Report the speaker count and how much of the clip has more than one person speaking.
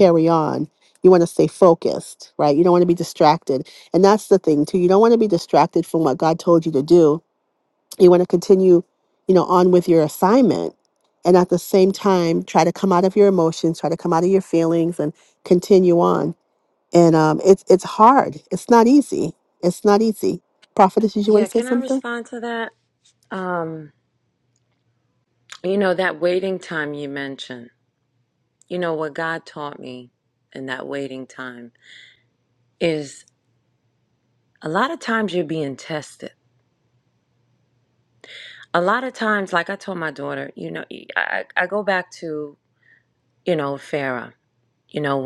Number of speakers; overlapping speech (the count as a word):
two, about 2%